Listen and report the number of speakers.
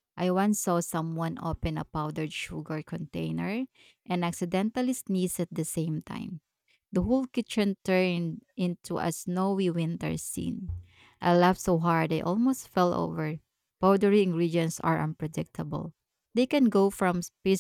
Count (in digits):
1